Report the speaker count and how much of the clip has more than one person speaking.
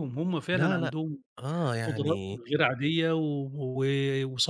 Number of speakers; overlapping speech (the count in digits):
2, about 20%